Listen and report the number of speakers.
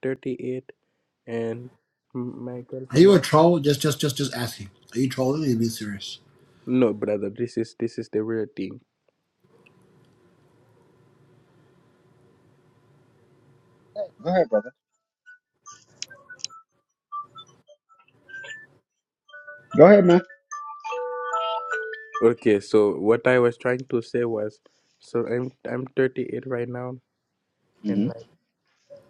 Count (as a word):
three